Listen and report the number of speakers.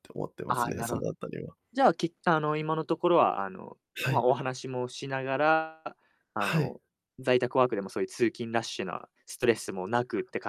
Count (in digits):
2